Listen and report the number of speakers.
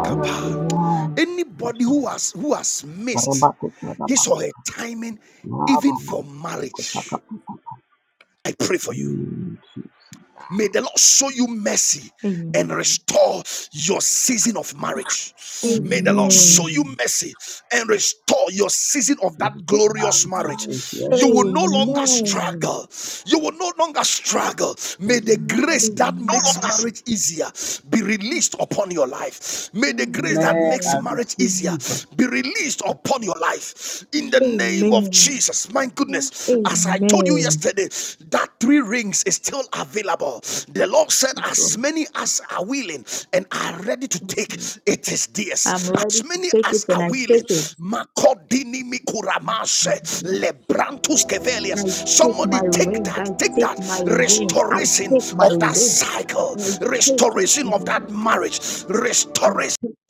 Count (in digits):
3